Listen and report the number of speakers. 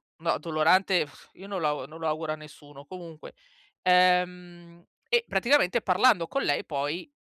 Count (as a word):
one